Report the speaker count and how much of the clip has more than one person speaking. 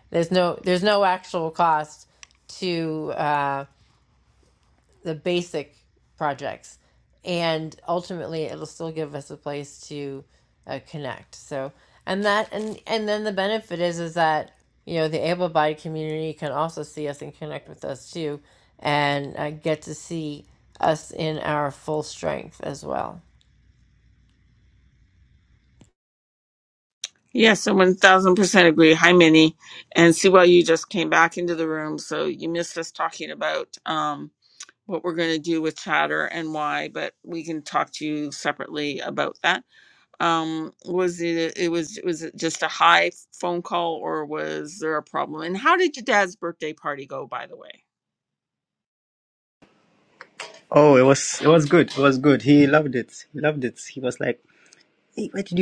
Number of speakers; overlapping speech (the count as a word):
three, no overlap